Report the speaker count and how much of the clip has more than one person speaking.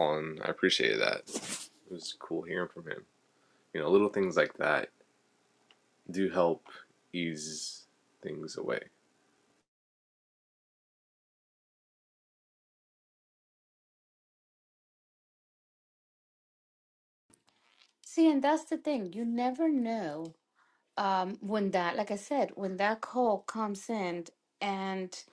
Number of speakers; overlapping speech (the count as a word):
two, no overlap